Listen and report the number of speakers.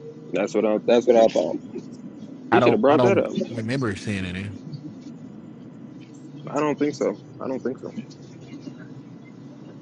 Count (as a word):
two